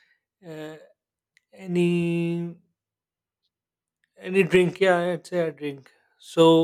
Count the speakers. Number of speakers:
1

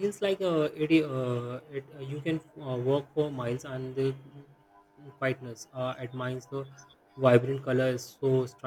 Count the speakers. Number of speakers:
1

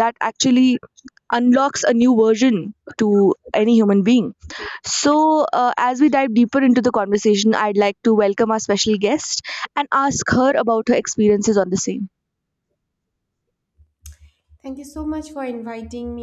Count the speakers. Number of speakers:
2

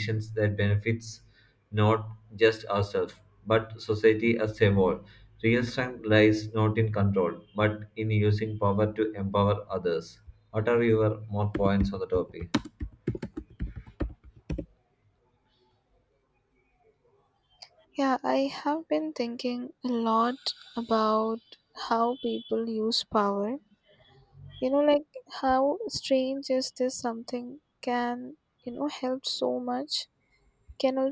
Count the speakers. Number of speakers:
2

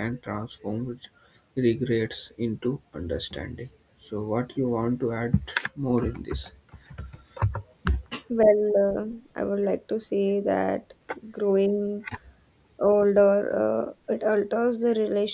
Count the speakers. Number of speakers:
2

